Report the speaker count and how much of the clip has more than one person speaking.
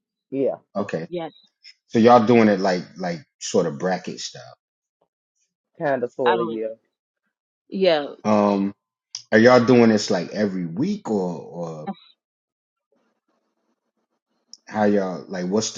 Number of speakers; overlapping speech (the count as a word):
three, about 2%